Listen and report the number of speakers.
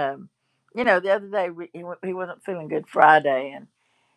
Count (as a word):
one